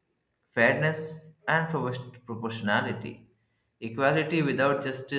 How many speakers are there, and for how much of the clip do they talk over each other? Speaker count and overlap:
1, no overlap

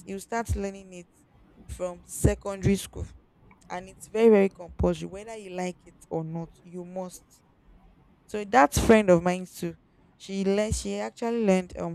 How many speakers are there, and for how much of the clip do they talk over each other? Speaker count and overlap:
1, no overlap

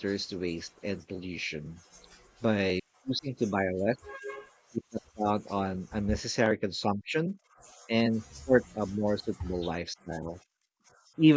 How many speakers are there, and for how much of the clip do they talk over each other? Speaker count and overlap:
1, no overlap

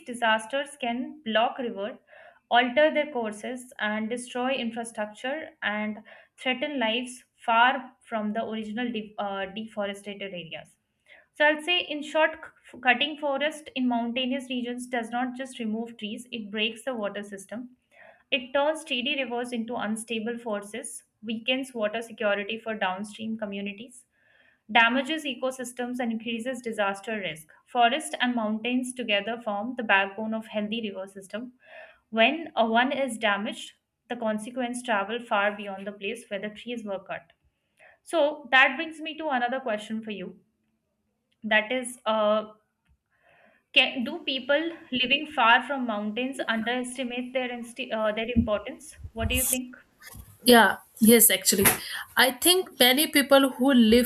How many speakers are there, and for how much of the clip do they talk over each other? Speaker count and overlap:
2, no overlap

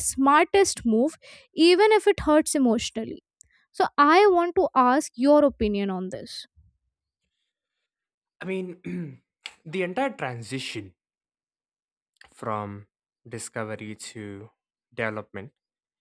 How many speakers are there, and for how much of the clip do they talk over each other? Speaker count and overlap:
2, no overlap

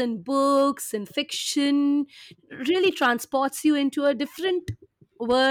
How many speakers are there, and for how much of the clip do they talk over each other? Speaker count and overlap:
1, no overlap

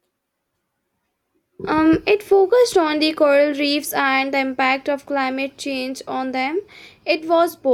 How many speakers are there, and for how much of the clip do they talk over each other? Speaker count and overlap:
1, no overlap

